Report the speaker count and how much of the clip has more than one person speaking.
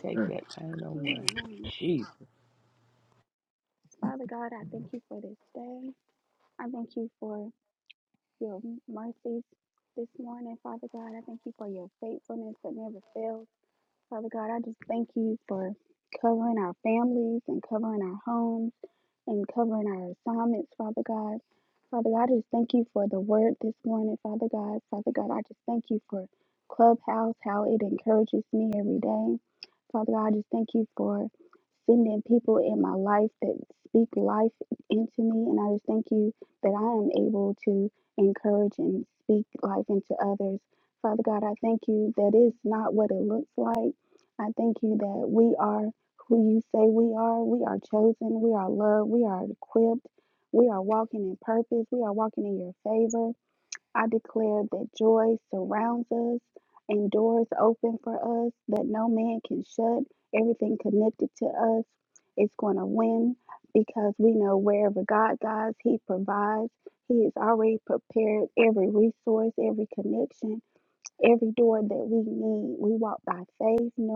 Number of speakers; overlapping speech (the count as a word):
two, under 1%